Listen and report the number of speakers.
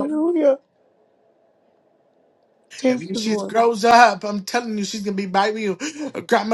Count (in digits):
2